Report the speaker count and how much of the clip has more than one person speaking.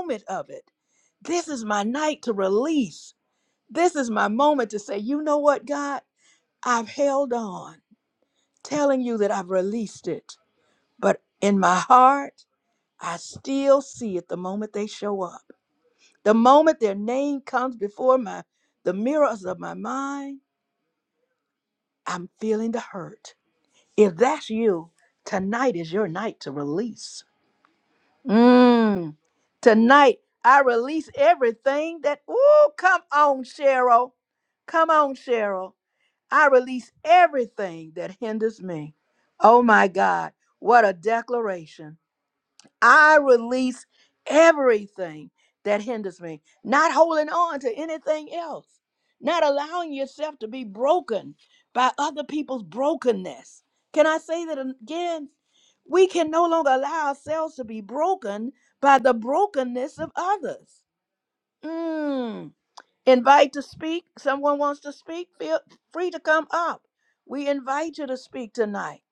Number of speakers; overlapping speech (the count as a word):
one, no overlap